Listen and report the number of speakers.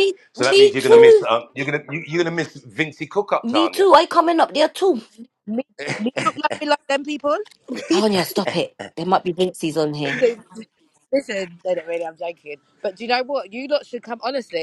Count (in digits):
3